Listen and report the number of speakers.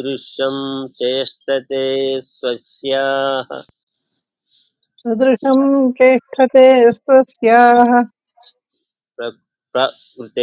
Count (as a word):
two